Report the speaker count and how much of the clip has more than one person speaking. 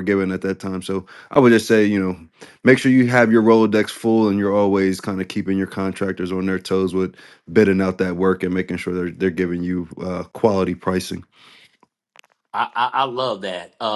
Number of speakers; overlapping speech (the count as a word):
two, no overlap